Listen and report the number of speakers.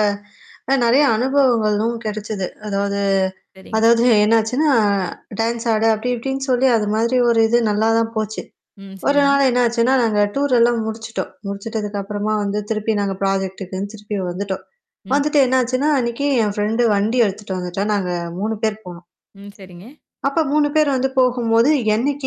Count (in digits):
2